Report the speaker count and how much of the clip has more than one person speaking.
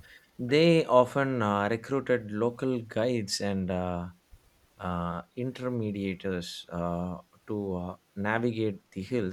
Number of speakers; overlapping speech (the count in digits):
1, no overlap